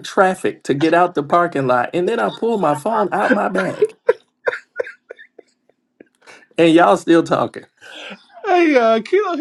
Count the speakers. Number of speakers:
2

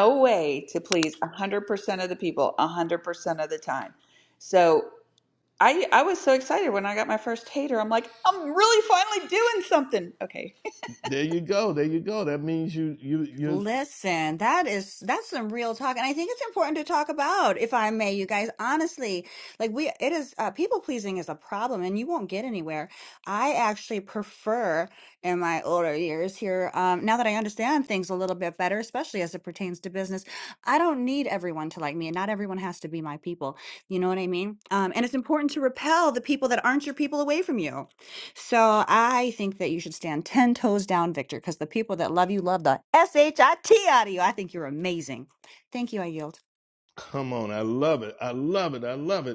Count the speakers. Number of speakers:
3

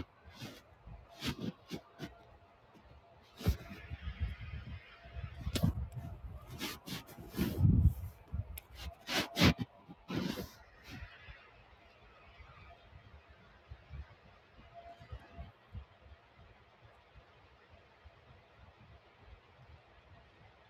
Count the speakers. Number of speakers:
0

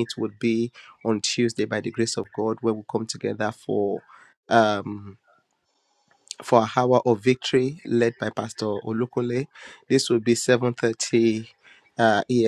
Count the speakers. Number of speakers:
1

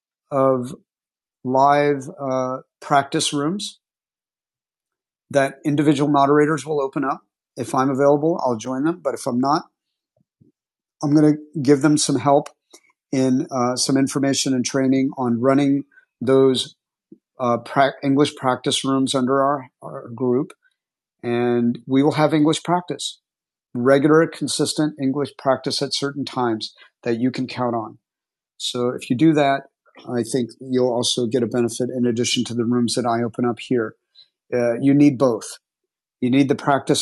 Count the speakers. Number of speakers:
1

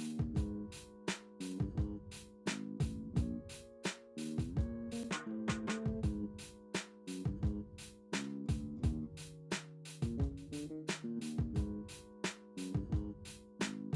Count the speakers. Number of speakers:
0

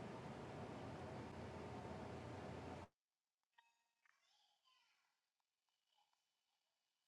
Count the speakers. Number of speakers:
0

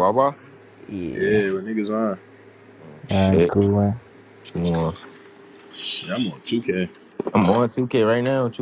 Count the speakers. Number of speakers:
3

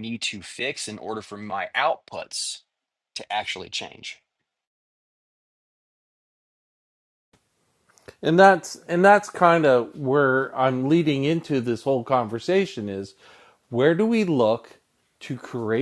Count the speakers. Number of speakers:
2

